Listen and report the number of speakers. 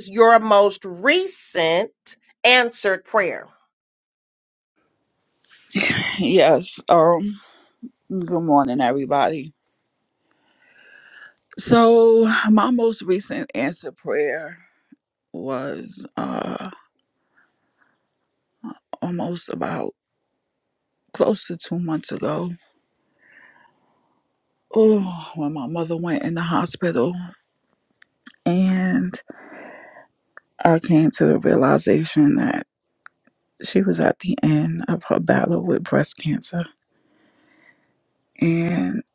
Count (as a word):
two